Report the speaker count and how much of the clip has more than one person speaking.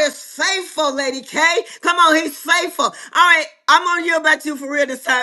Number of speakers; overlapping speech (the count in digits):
1, no overlap